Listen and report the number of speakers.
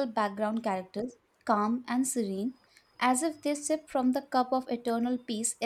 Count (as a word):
one